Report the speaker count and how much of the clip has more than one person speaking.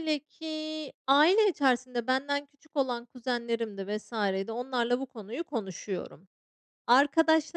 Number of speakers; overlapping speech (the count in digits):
1, no overlap